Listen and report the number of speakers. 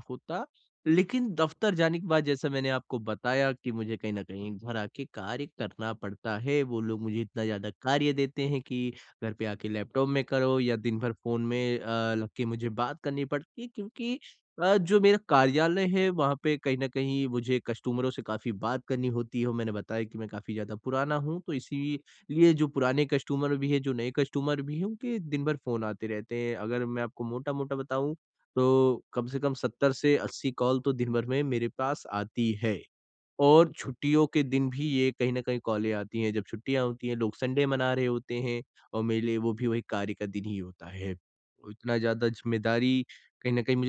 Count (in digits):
1